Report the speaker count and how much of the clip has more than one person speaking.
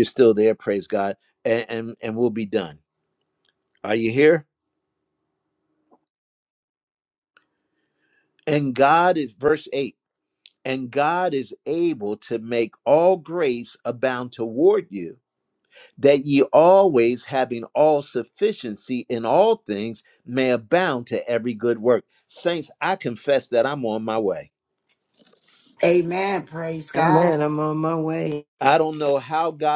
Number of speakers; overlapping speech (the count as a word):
three, about 1%